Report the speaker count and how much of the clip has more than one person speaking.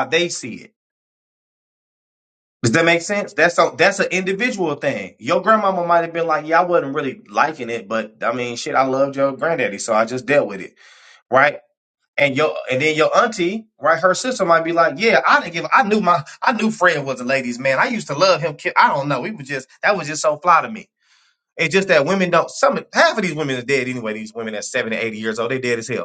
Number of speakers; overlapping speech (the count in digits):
1, no overlap